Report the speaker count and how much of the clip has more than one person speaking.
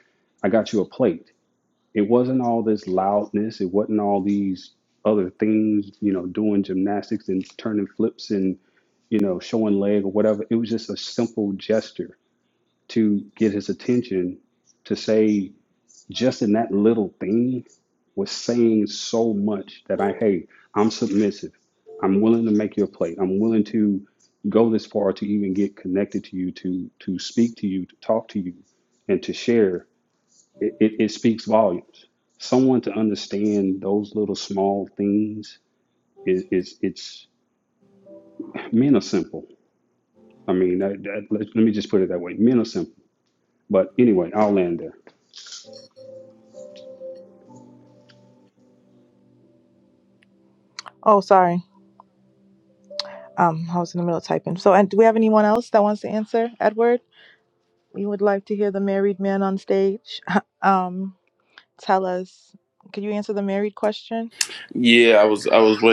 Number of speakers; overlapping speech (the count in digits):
3, no overlap